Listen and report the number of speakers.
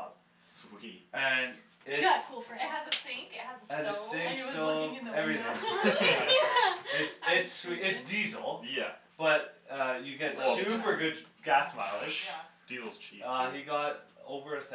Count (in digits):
4